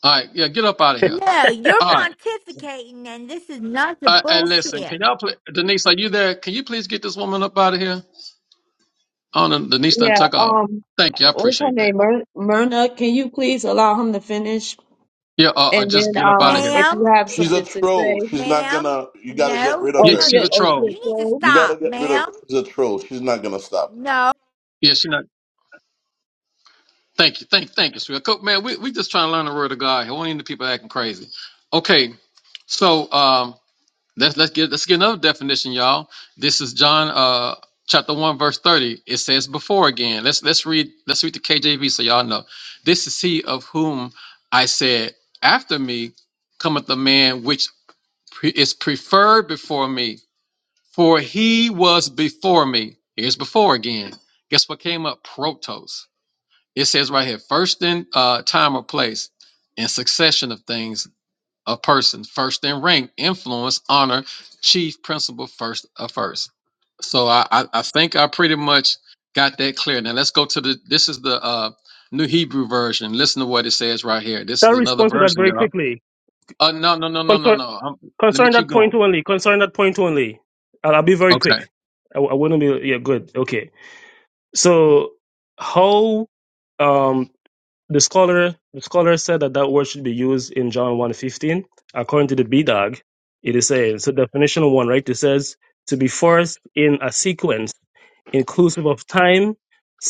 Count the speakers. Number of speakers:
5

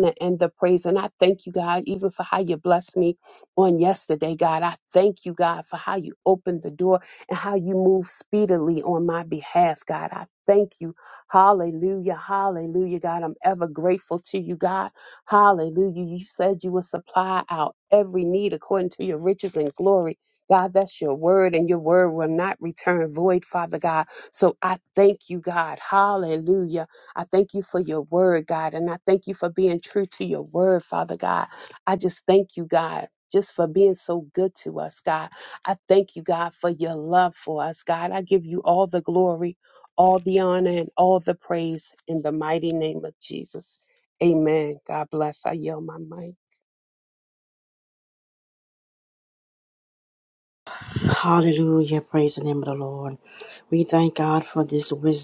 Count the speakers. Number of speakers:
2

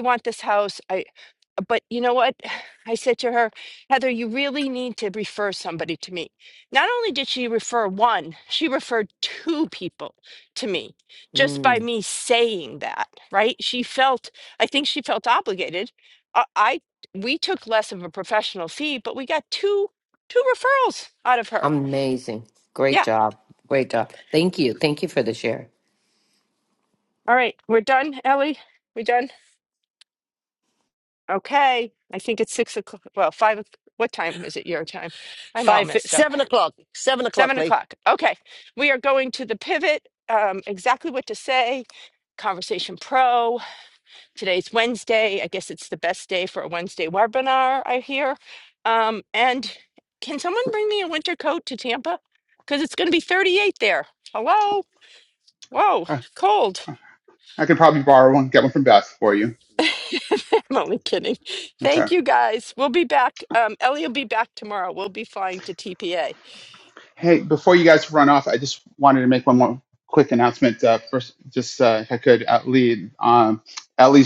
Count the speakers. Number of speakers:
4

